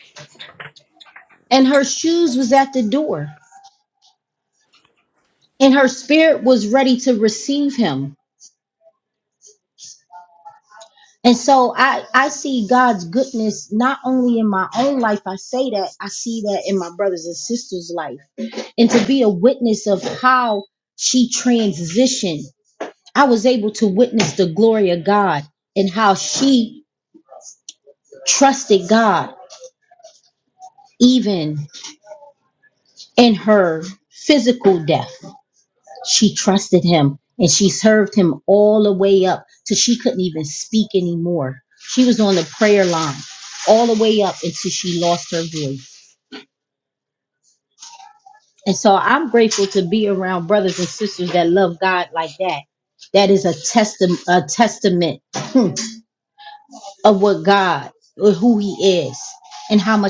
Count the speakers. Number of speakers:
one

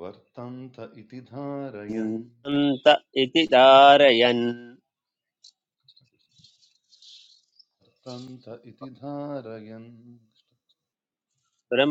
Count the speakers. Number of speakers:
two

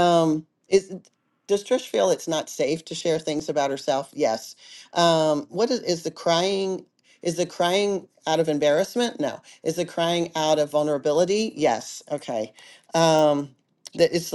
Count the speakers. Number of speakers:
one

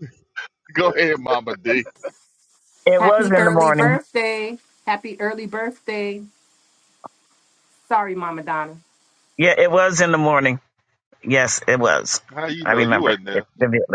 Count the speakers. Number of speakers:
three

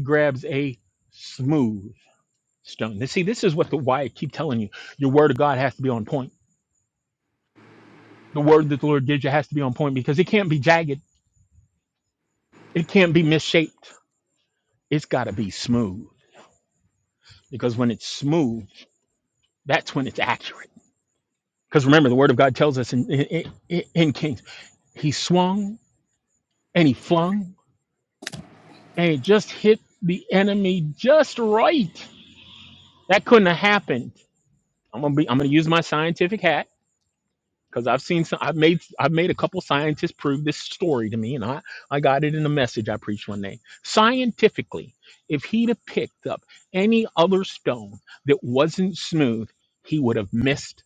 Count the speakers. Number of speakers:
one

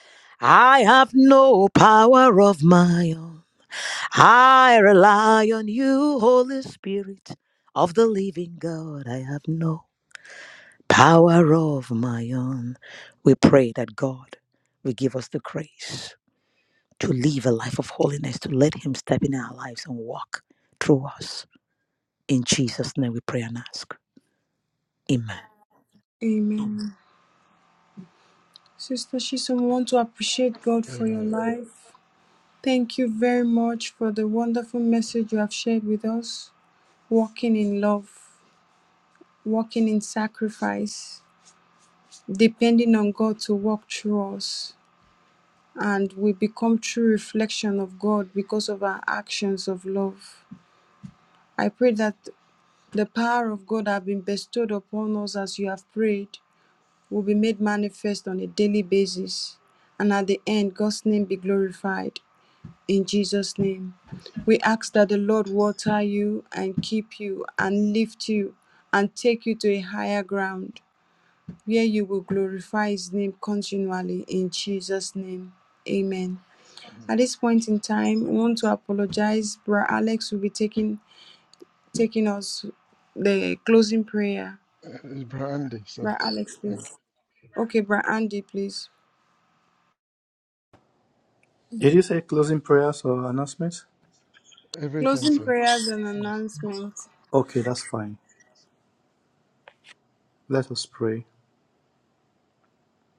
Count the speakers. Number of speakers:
four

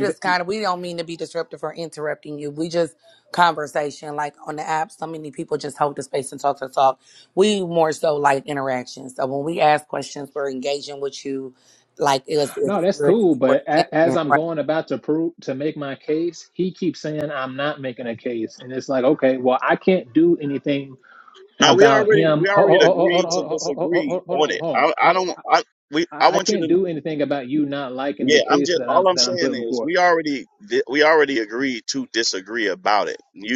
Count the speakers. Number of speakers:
three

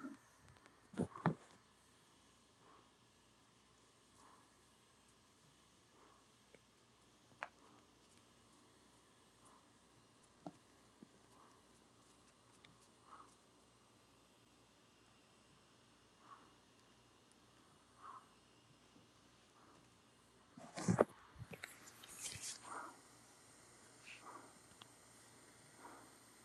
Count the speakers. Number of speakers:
zero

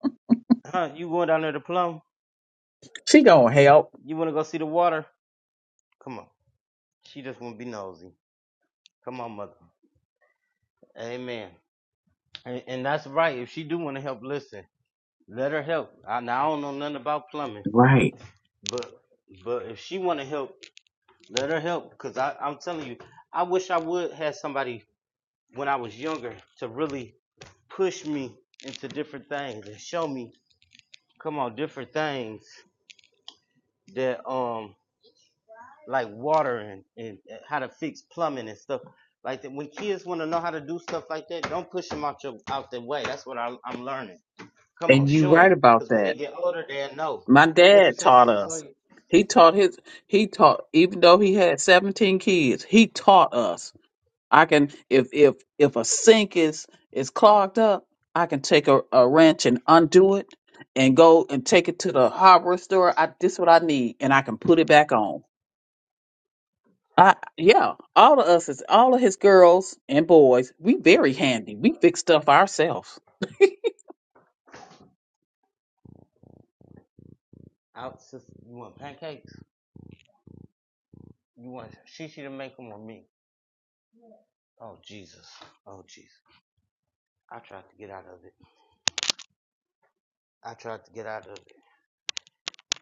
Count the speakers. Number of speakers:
two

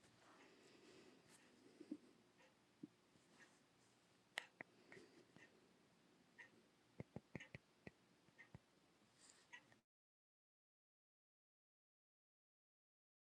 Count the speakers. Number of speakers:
zero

